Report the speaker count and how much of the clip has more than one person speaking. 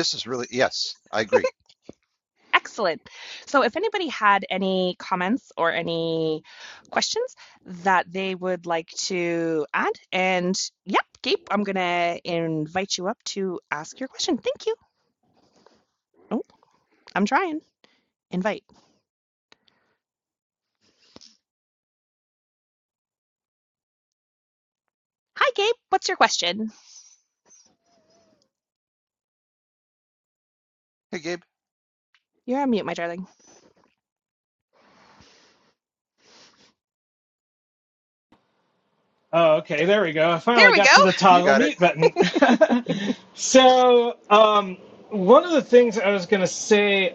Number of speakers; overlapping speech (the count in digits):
3, about 2%